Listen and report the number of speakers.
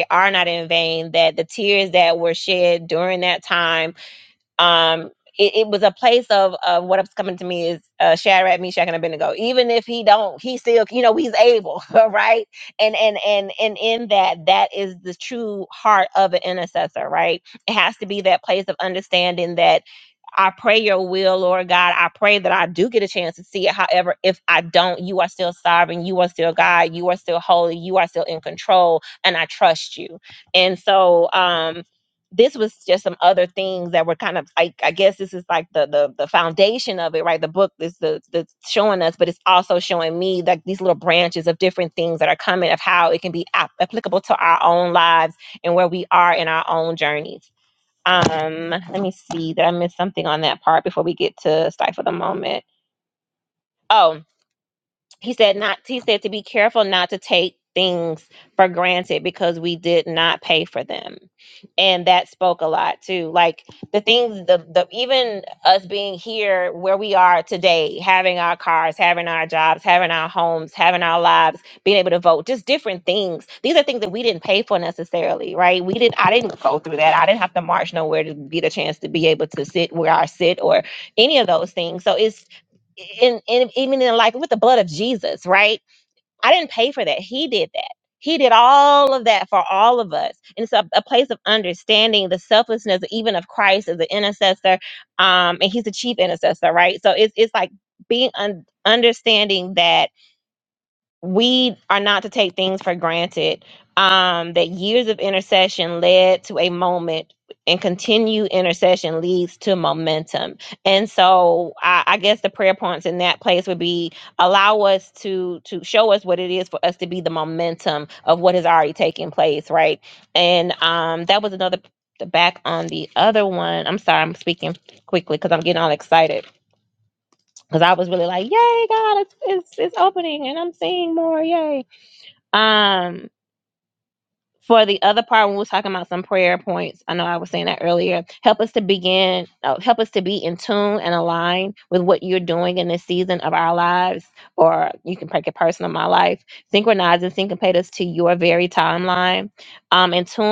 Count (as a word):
one